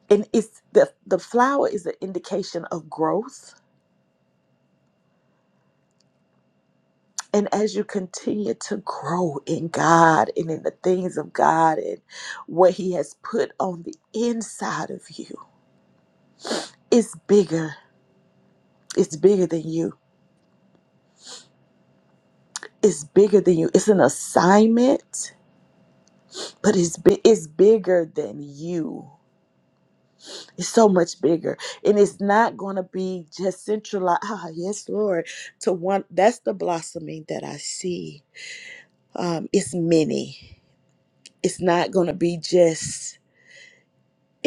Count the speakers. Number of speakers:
one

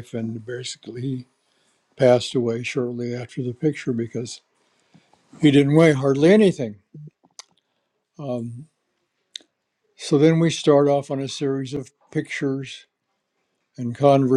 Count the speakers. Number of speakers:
one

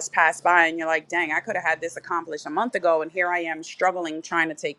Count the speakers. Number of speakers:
one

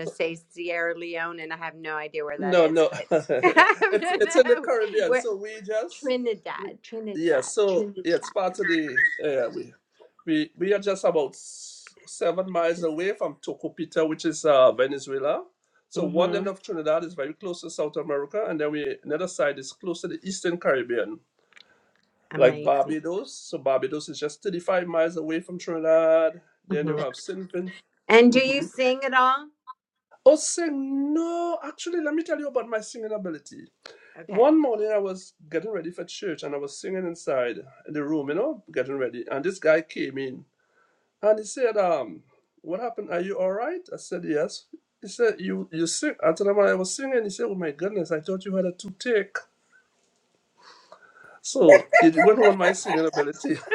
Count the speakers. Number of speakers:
two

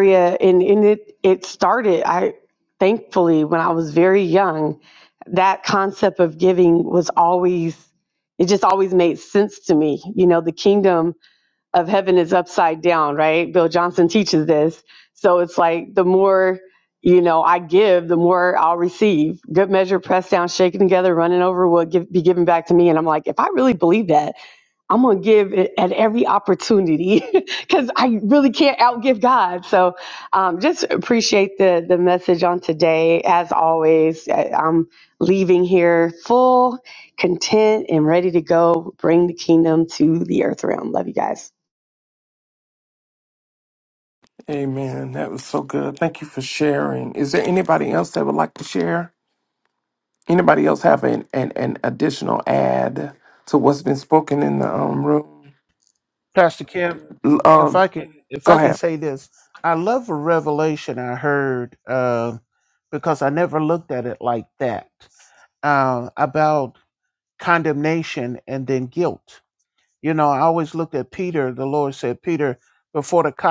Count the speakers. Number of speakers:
three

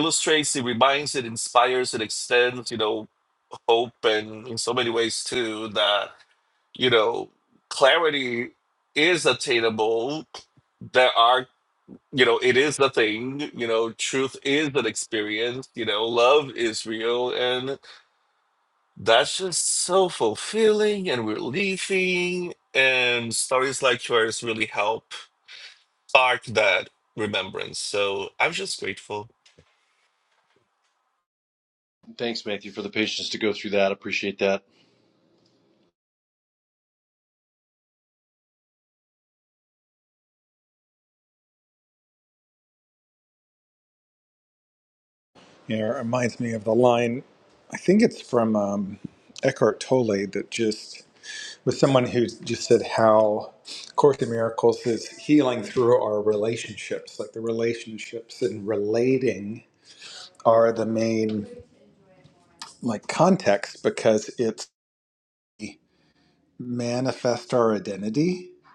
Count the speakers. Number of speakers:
three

